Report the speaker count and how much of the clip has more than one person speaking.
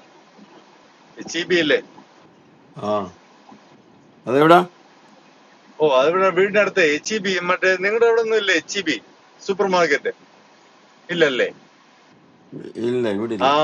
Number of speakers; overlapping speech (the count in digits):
2, about 1%